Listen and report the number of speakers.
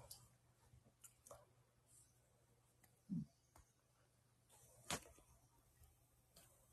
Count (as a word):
zero